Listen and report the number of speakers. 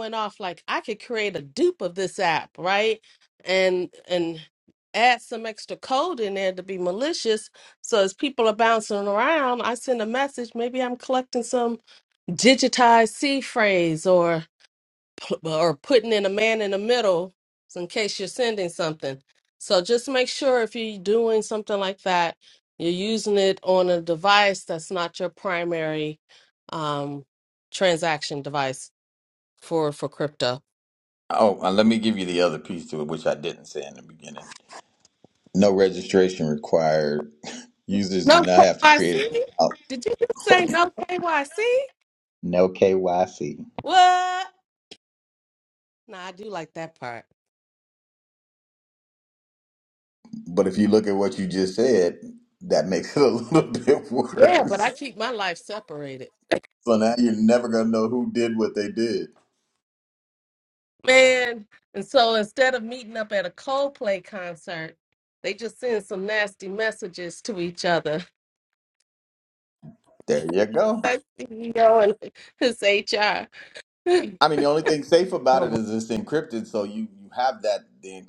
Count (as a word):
two